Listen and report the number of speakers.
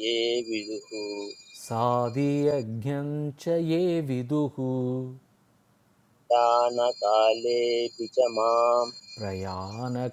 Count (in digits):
2